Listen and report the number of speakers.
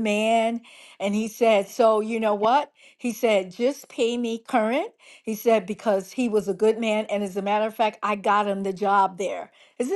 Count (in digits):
1